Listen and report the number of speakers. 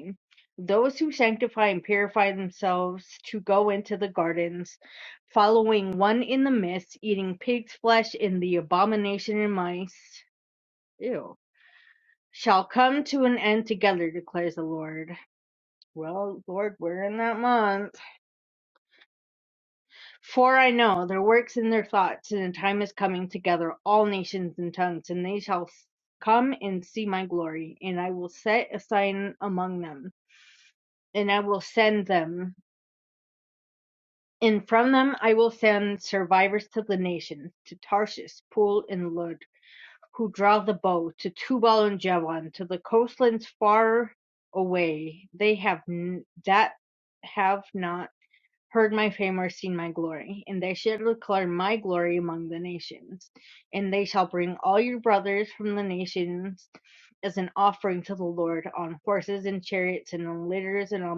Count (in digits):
1